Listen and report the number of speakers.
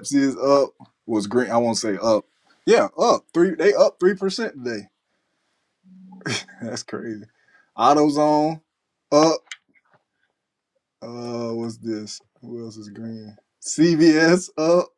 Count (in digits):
1